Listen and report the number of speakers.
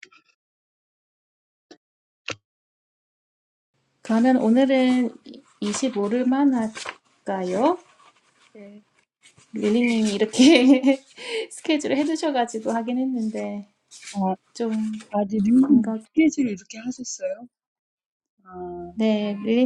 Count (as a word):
two